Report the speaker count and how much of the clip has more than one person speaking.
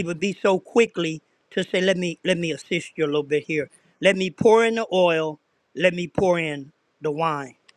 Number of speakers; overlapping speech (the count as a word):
one, no overlap